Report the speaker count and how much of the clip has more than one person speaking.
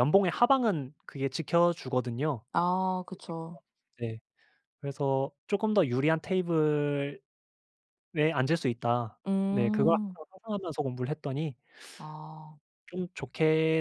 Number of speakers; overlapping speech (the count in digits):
2, about 4%